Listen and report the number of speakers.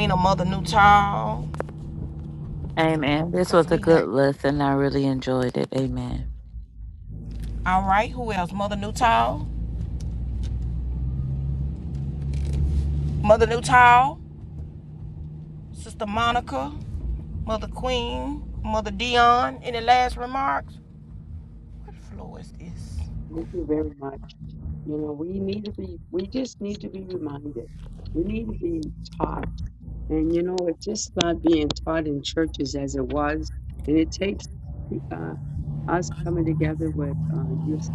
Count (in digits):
3